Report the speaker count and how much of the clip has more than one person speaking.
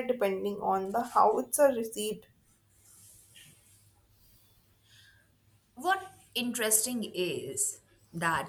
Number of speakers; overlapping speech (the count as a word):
two, no overlap